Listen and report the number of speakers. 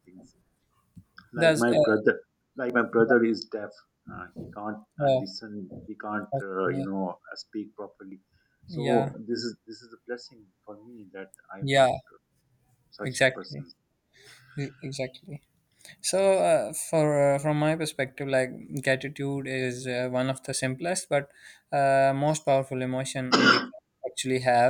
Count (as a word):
two